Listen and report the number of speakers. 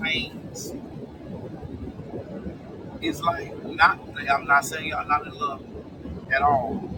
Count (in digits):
1